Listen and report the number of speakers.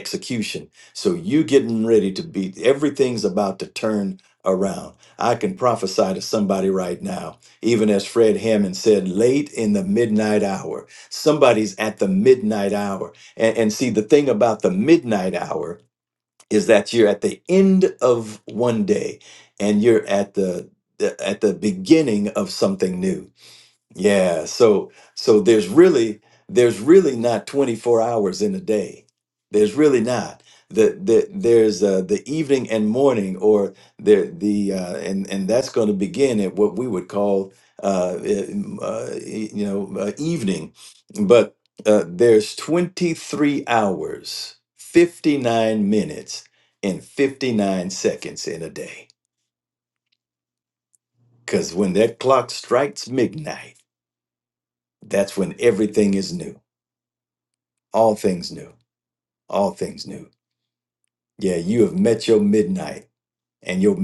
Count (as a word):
one